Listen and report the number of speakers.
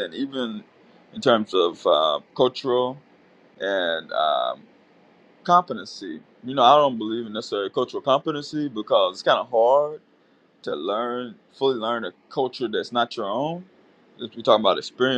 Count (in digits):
1